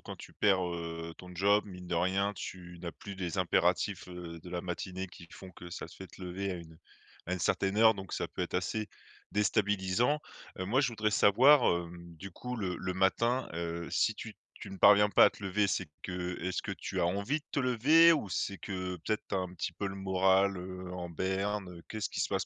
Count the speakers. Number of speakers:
1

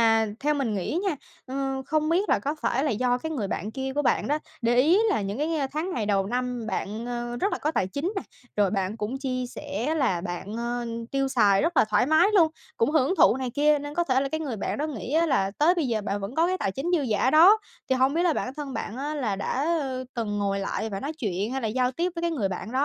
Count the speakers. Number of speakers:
1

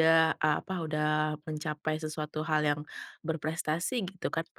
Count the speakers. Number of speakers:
1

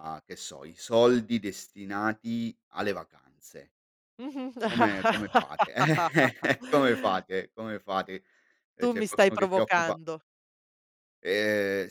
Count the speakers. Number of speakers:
2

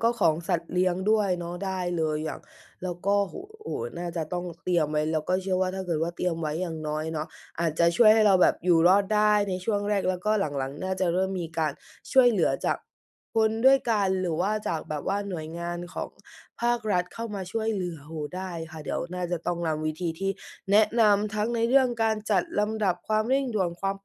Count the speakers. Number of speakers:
1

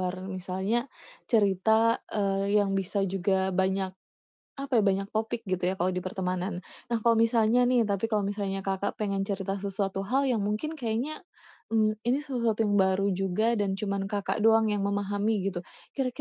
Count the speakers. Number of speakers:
1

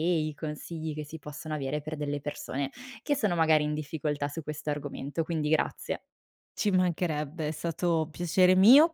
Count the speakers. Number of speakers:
2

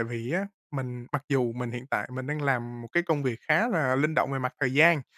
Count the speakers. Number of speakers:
1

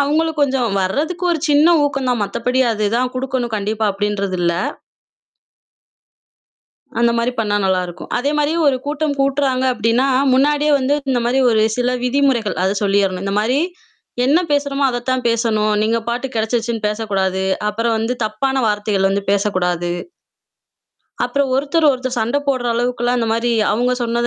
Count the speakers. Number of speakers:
1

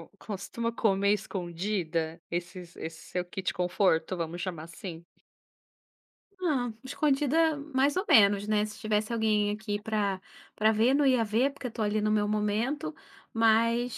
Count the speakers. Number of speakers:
2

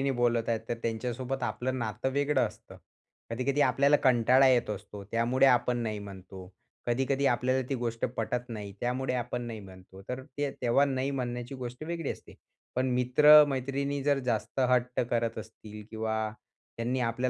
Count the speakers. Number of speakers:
1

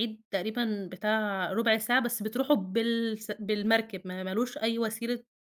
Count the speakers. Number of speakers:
1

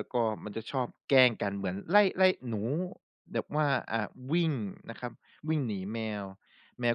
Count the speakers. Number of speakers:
1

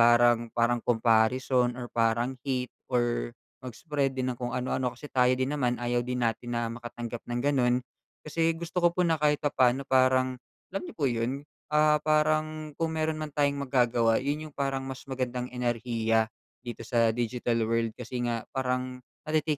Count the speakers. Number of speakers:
1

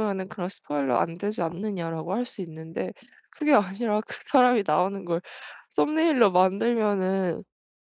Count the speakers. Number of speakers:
1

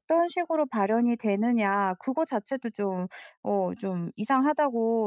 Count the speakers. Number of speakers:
1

